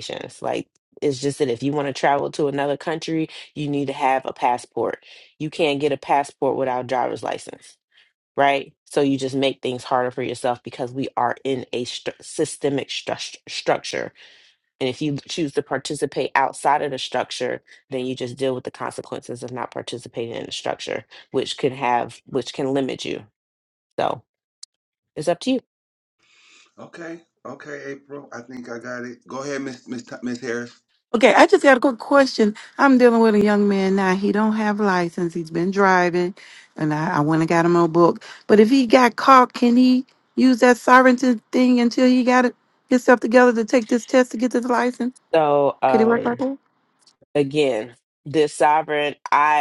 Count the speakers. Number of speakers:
3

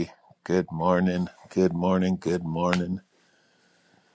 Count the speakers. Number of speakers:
1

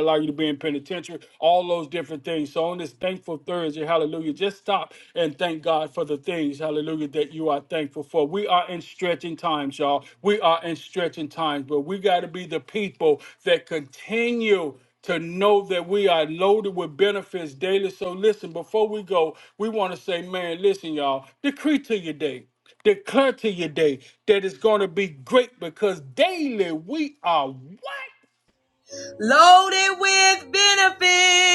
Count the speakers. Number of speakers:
2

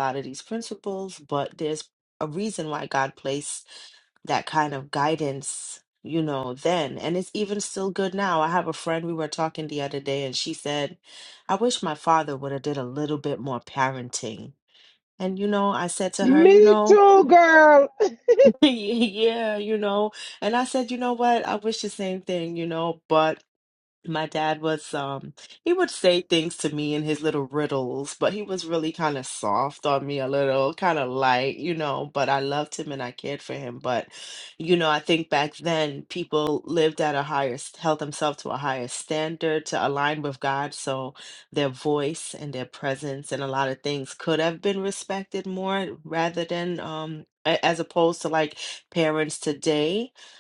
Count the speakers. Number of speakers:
2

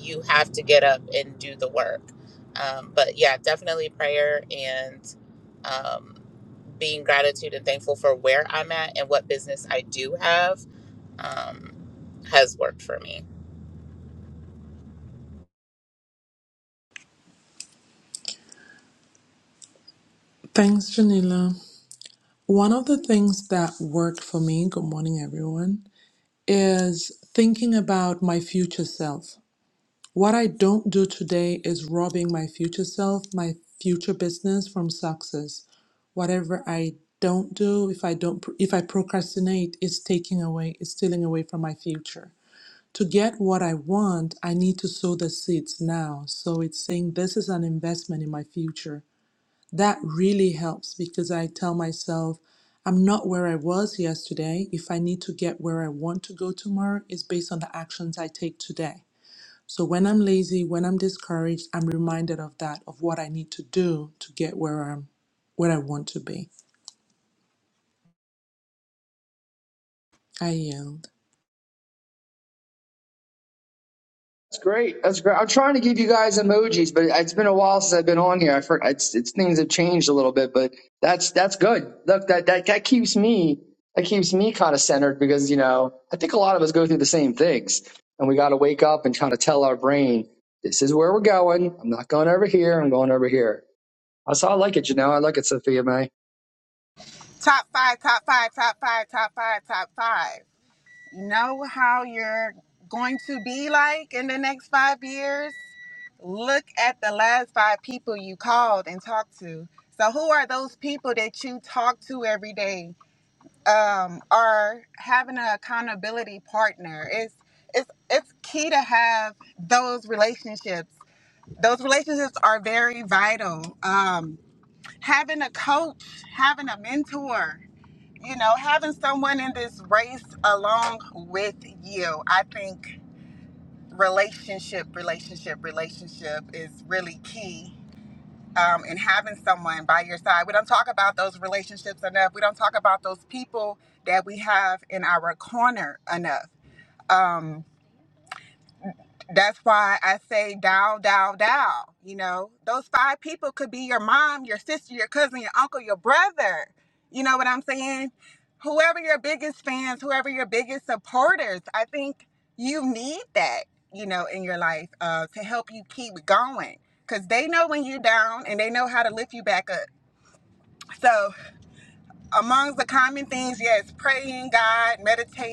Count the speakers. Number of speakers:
4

